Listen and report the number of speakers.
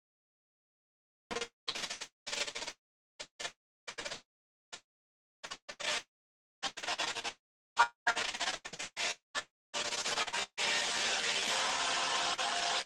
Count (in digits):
0